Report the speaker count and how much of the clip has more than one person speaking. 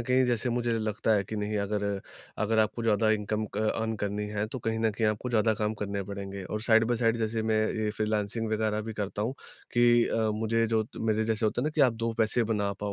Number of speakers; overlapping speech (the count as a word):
one, no overlap